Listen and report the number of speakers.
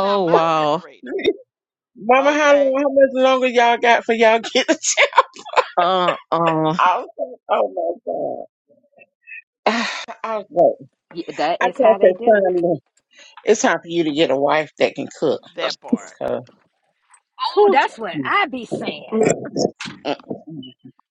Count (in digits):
4